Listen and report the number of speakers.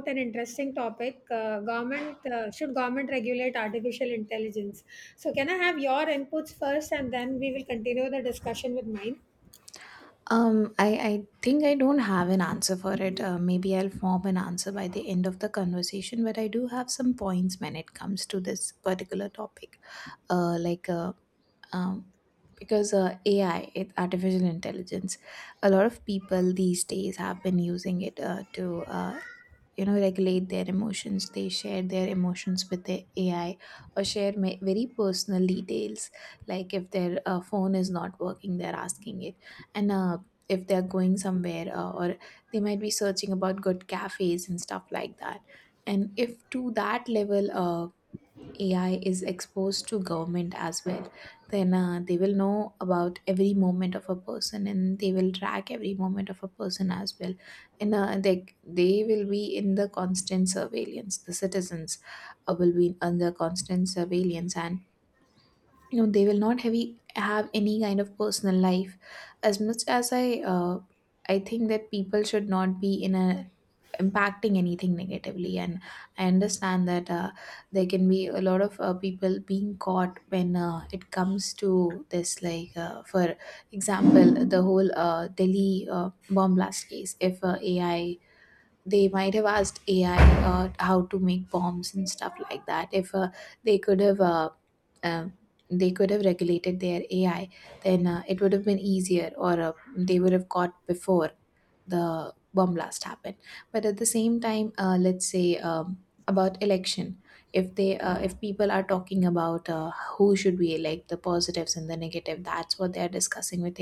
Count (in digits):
2